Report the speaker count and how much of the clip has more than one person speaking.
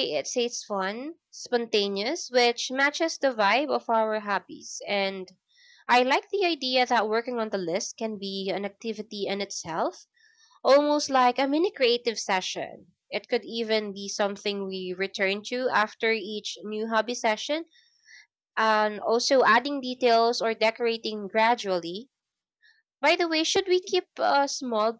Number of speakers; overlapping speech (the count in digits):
1, no overlap